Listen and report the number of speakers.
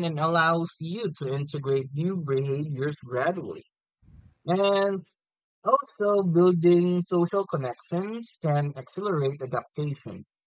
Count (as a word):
one